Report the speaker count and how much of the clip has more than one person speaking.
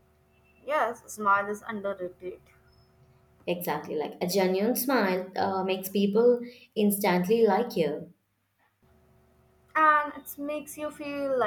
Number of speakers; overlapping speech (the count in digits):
2, no overlap